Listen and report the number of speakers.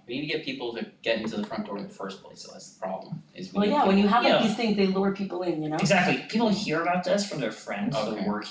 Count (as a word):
three